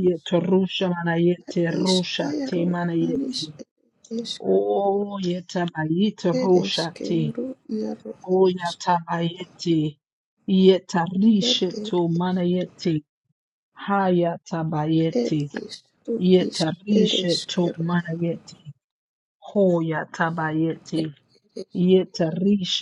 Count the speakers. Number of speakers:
2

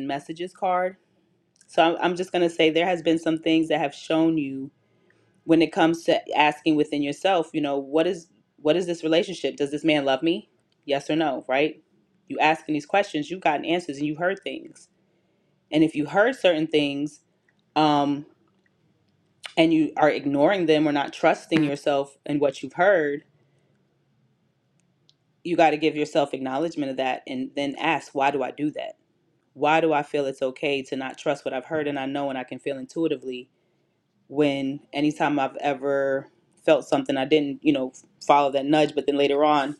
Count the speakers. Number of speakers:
1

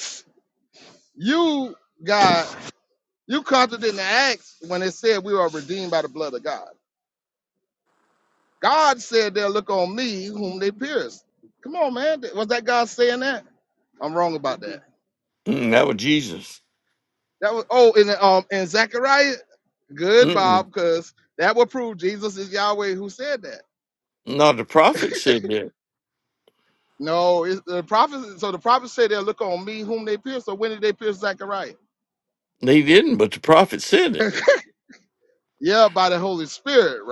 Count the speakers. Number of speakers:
2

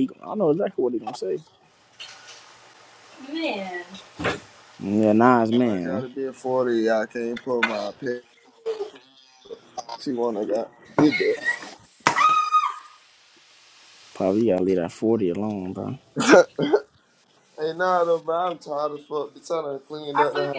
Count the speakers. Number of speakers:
3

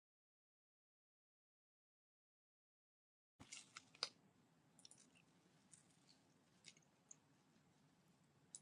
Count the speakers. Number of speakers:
0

